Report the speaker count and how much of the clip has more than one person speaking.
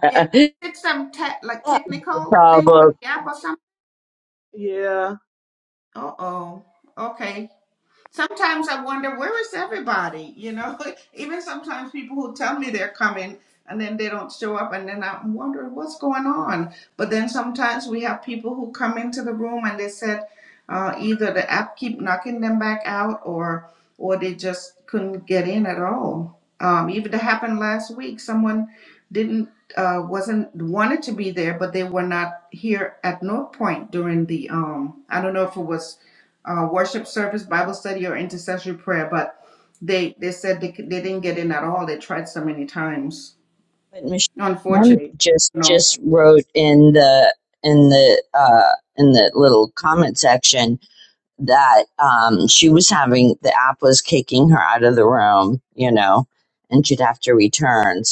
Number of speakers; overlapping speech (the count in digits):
3, about 2%